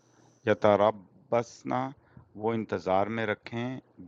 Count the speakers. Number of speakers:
one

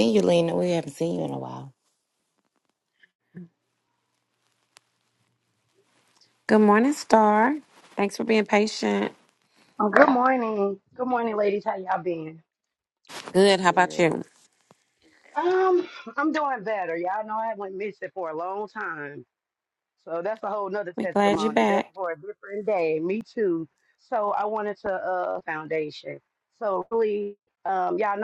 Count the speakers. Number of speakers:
three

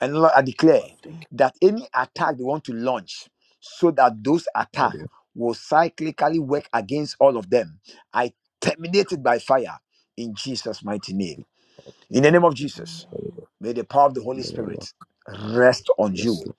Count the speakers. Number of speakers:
two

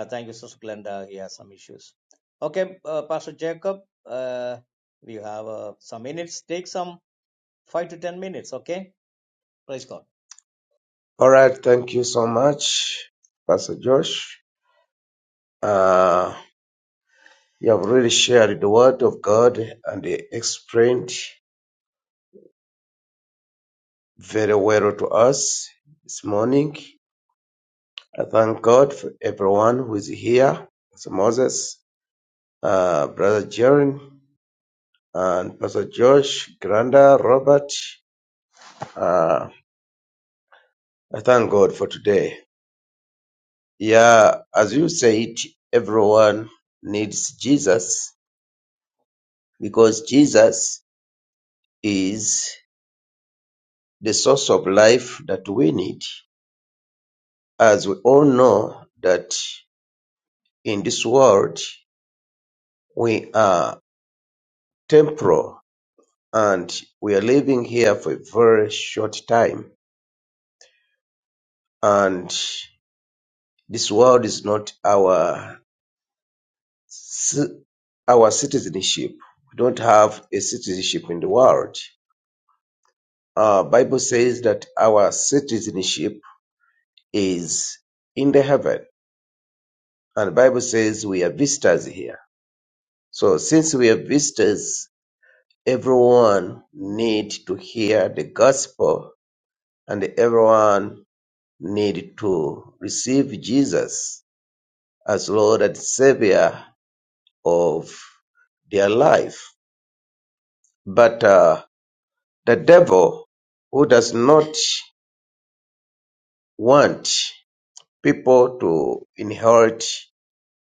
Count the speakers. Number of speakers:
two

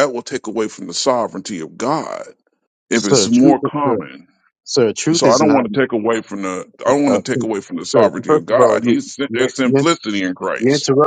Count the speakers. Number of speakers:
two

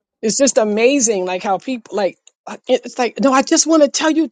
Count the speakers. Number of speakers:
one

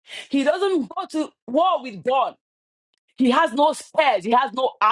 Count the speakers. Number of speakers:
one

